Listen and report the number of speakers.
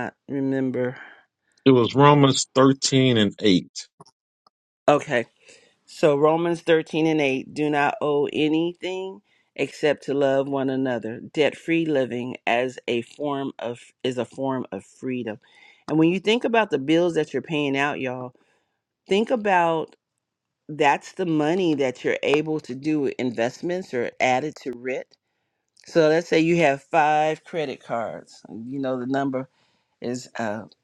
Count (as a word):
two